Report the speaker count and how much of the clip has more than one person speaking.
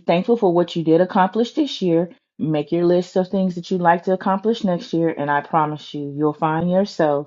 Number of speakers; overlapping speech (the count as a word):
one, no overlap